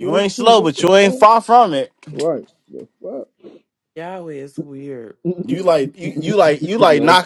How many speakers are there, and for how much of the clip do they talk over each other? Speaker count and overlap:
three, about 24%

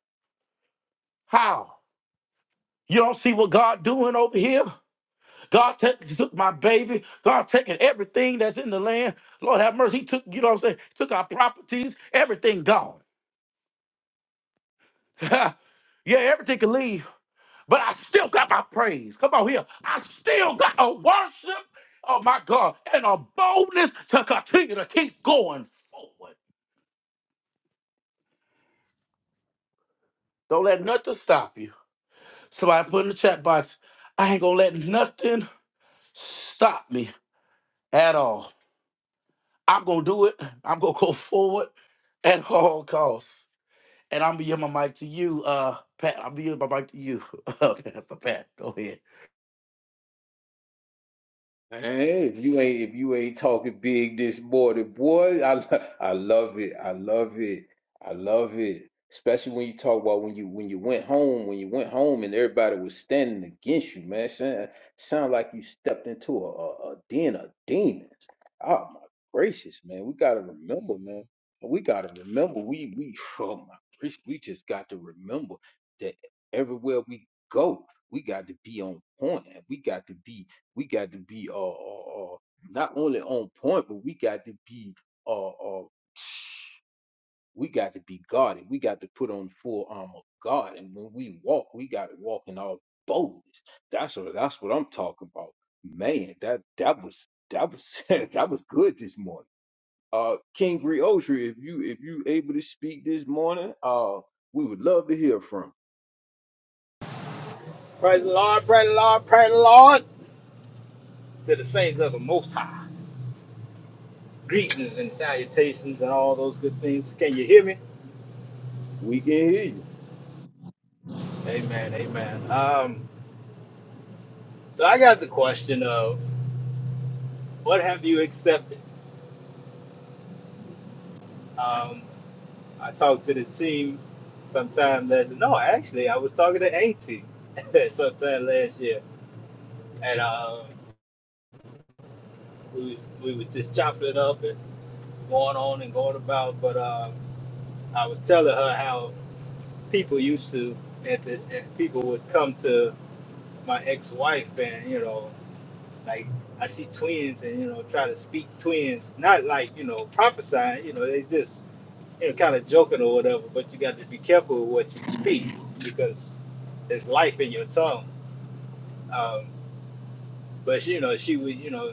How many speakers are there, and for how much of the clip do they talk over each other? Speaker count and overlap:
three, no overlap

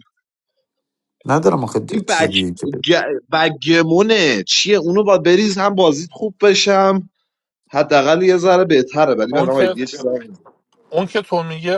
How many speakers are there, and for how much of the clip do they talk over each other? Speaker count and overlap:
three, about 11%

